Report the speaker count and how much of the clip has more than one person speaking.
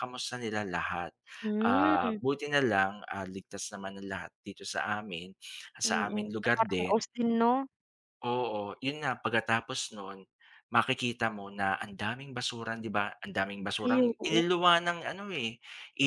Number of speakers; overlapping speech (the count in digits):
2, about 15%